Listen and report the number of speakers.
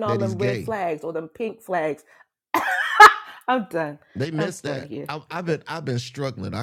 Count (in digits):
2